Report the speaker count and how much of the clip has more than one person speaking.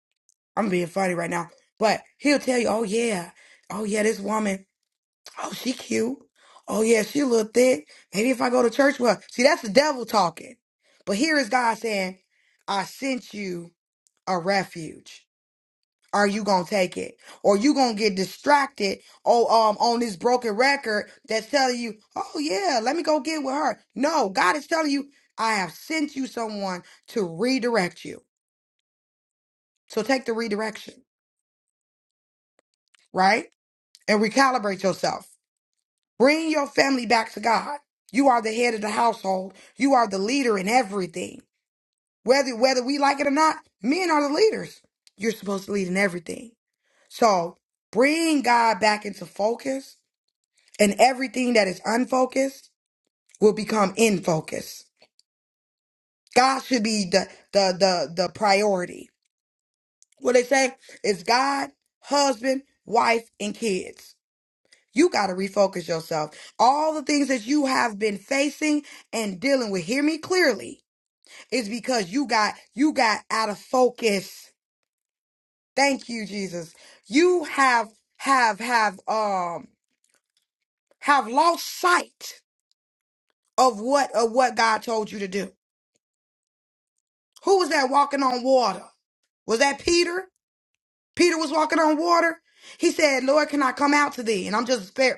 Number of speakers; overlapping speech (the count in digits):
1, no overlap